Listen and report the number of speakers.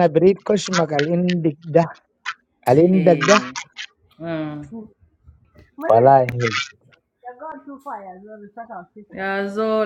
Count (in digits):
3